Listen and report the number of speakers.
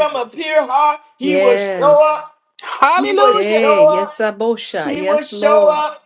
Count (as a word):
three